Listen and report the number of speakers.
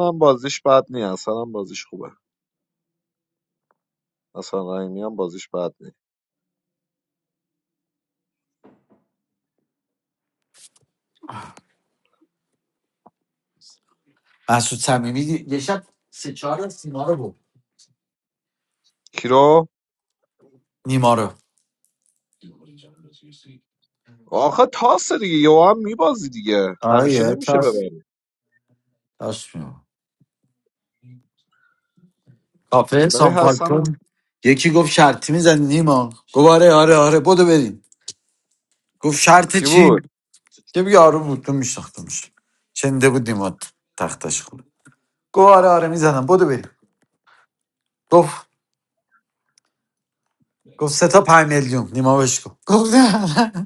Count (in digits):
2